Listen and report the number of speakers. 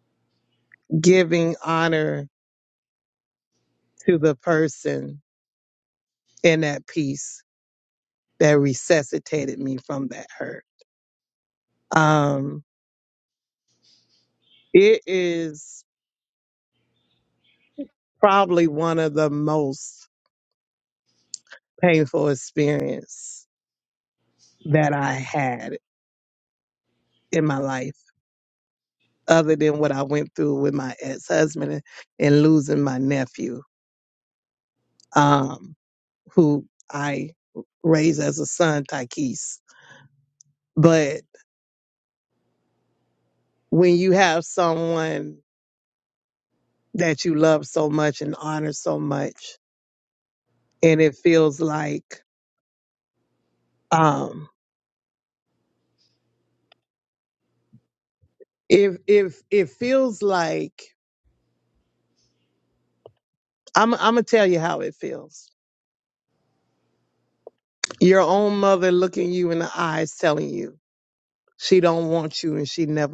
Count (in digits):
1